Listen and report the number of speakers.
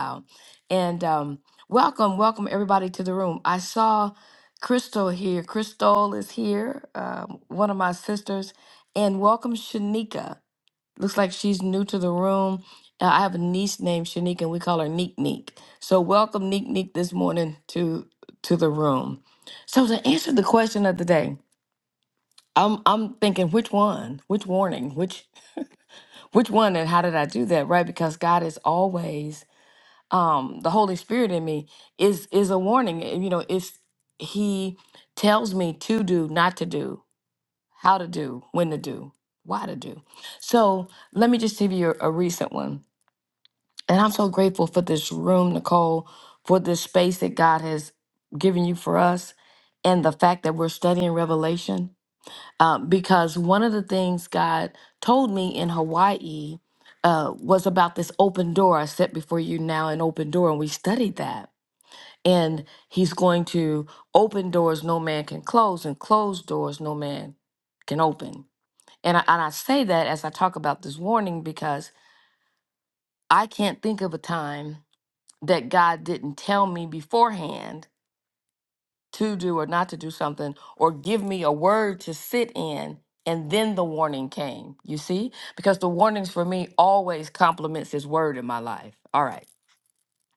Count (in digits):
1